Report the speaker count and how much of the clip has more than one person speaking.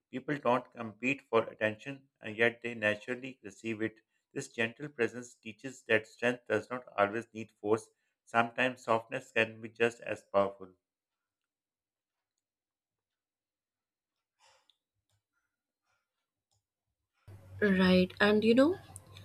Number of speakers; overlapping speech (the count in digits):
2, no overlap